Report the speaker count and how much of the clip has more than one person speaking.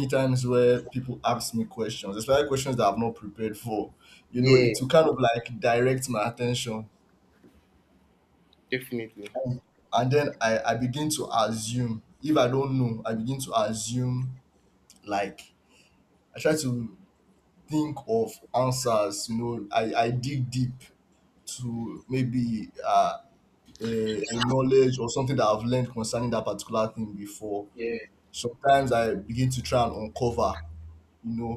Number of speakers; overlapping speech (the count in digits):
2, about 1%